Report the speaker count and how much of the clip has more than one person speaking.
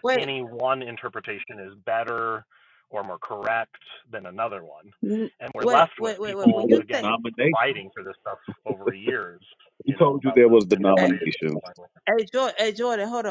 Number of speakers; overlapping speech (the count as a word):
three, about 26%